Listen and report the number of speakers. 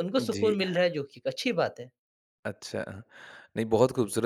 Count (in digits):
2